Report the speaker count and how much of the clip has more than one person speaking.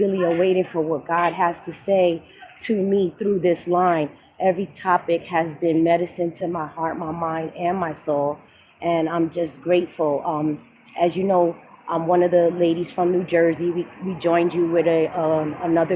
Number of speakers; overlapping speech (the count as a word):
one, no overlap